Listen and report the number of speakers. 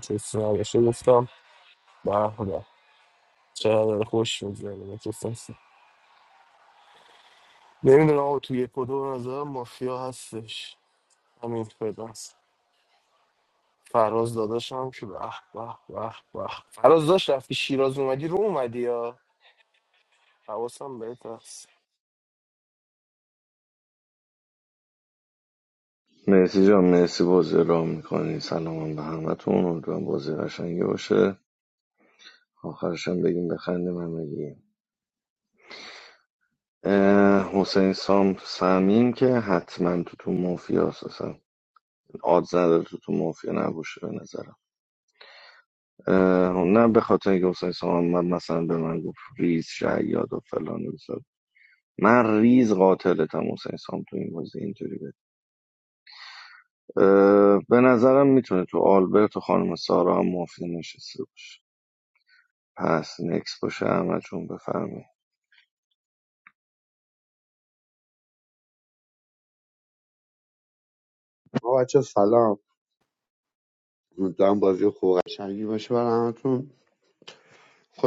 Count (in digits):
3